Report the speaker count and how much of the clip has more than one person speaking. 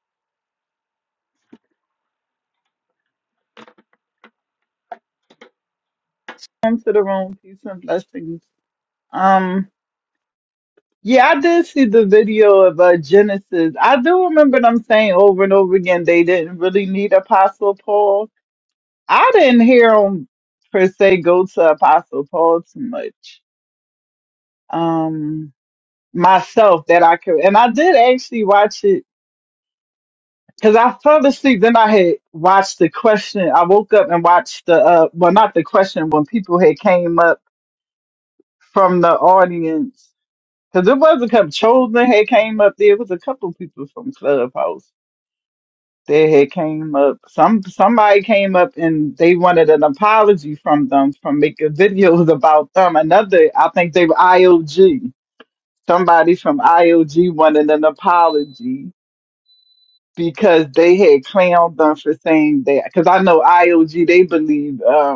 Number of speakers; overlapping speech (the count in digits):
1, no overlap